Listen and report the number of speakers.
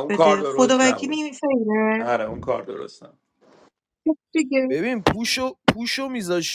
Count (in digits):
3